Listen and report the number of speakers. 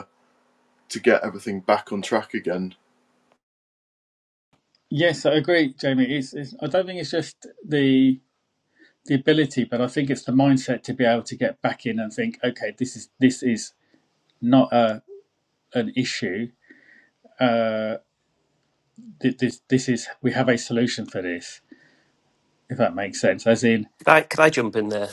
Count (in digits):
3